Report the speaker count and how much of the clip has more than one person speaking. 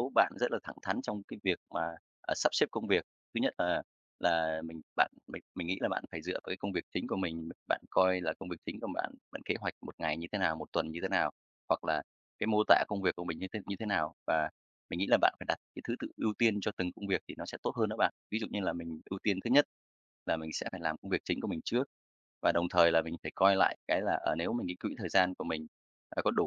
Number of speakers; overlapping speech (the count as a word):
one, no overlap